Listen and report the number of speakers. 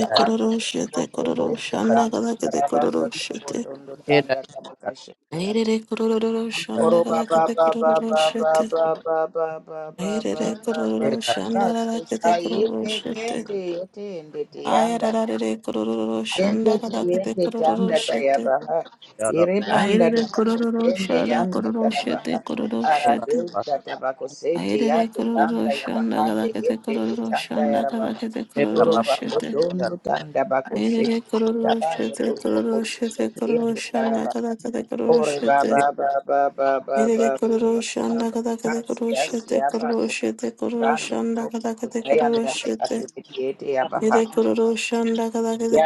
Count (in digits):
2